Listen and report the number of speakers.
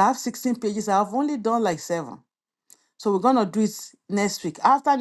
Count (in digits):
1